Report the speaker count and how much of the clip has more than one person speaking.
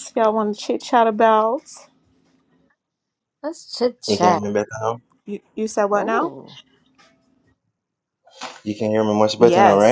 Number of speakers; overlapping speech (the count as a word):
three, about 14%